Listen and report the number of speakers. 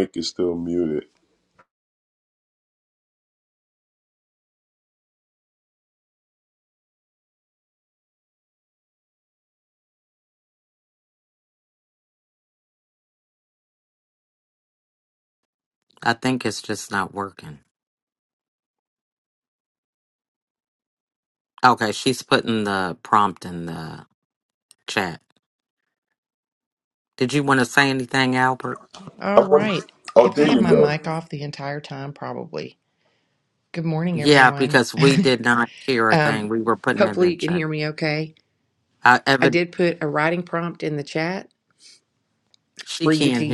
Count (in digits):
3